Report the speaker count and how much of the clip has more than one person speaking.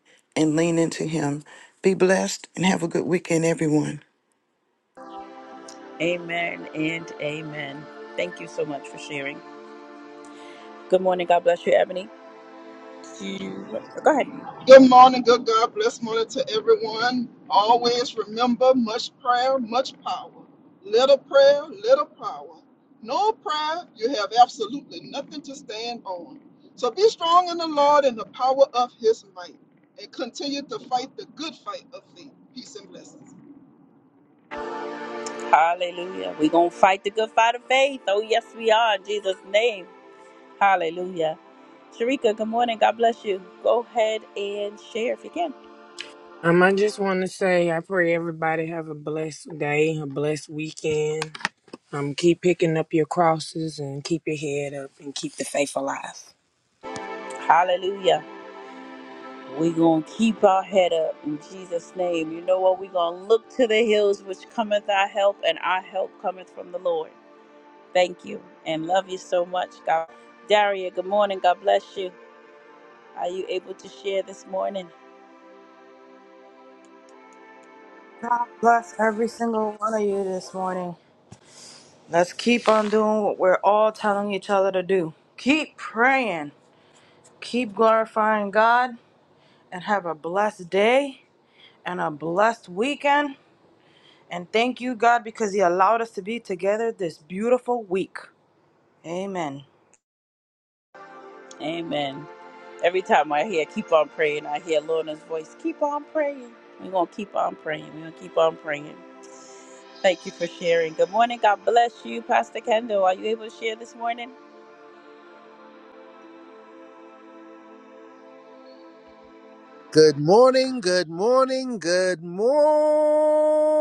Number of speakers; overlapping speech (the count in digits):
6, no overlap